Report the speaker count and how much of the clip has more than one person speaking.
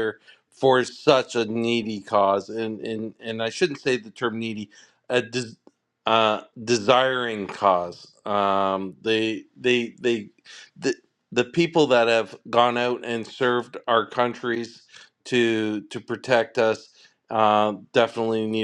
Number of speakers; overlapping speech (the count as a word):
one, no overlap